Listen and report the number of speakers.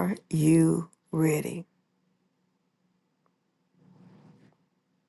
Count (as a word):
one